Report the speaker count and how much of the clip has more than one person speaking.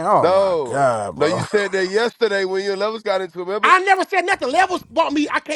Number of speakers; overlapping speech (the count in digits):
3, about 18%